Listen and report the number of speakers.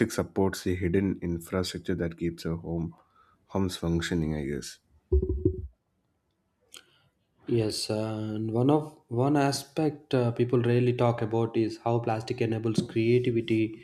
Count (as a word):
two